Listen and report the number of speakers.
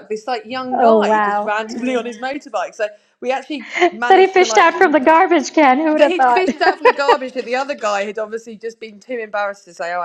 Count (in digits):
2